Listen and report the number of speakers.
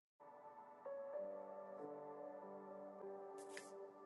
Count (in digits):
0